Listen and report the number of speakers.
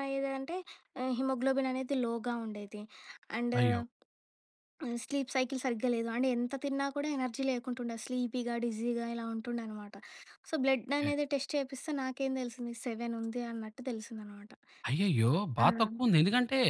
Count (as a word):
two